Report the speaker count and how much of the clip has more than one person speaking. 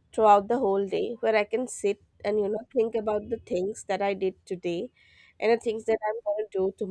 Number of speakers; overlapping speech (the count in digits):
1, no overlap